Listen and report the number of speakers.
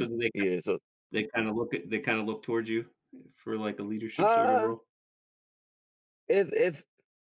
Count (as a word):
two